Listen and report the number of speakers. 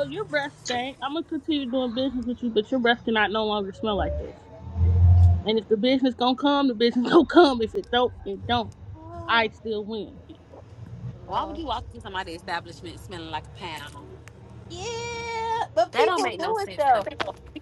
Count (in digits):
3